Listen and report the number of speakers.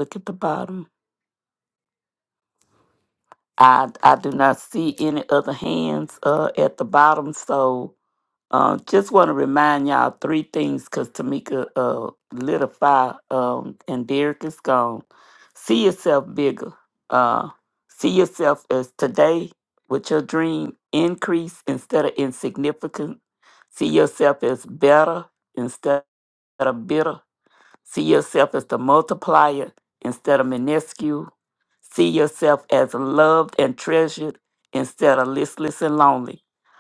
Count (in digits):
1